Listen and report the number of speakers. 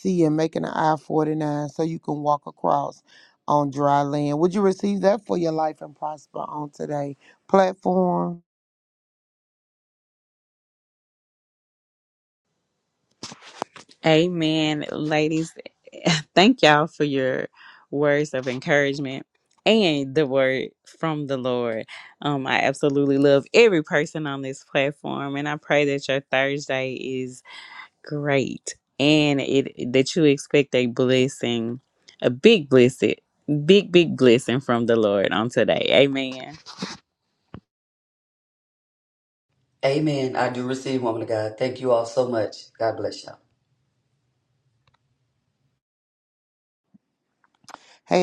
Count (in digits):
3